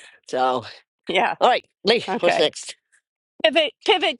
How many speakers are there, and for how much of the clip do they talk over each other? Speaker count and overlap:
2, about 10%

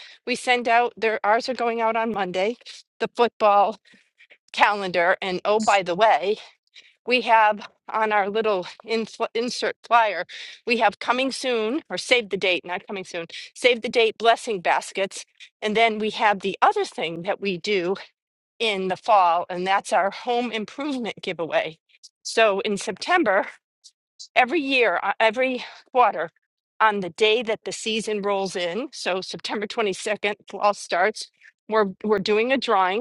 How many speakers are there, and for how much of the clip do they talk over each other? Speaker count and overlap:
1, no overlap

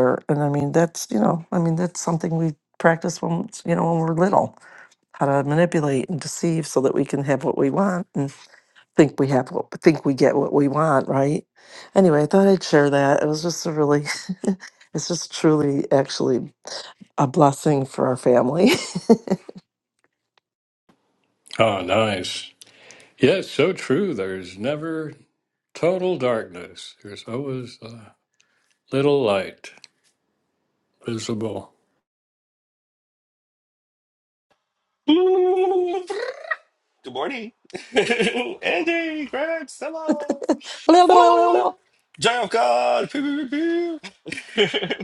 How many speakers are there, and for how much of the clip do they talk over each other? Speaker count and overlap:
3, about 1%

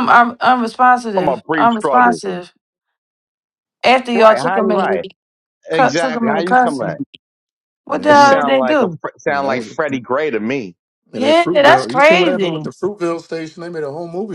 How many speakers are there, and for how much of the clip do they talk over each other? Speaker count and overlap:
3, about 42%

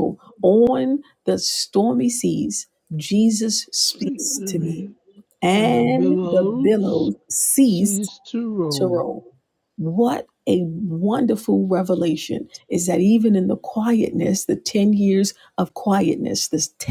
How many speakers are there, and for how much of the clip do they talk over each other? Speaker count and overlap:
2, about 18%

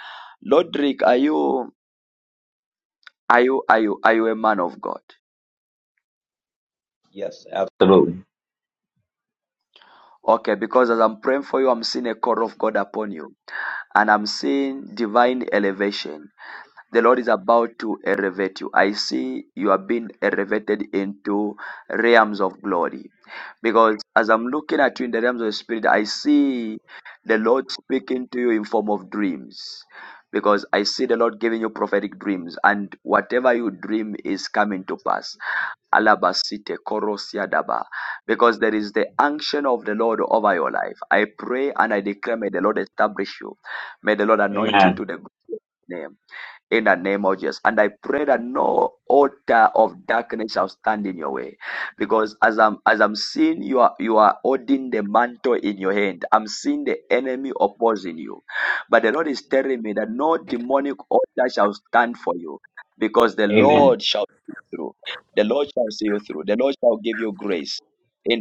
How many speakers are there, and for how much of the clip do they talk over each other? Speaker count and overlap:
2, about 1%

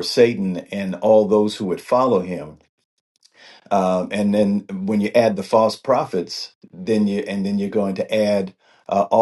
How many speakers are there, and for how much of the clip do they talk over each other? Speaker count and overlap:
1, no overlap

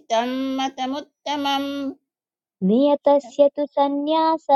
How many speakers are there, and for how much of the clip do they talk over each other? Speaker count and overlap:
2, no overlap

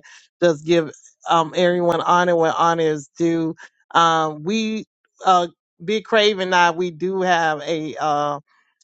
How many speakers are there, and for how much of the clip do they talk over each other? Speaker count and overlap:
1, no overlap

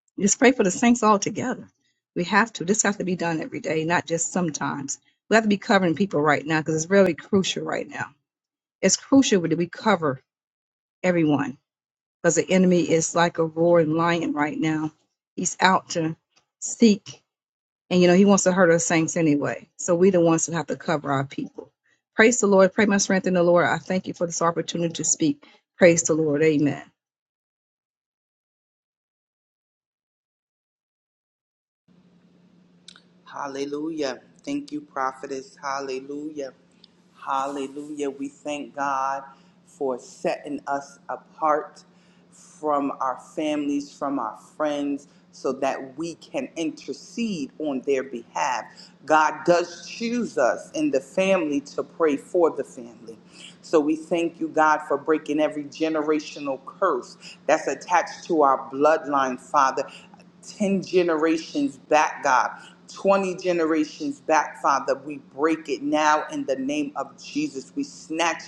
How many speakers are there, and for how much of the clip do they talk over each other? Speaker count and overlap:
2, no overlap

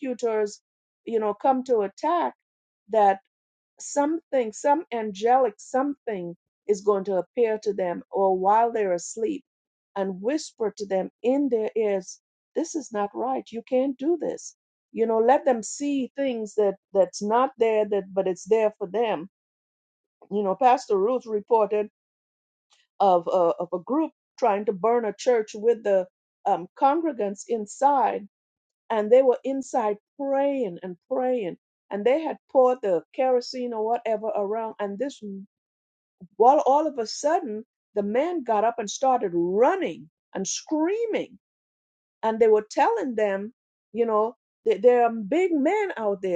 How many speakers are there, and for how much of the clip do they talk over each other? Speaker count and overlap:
1, no overlap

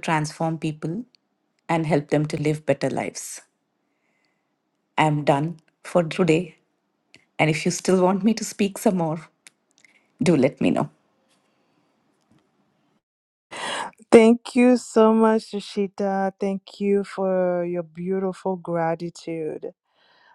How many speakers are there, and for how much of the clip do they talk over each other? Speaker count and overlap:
2, no overlap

